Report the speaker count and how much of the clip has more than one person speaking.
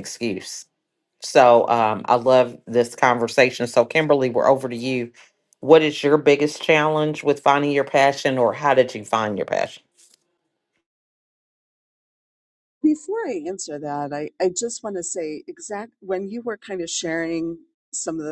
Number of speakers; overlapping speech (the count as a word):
two, no overlap